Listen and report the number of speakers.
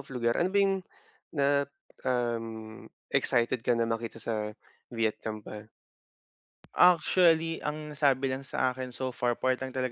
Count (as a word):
two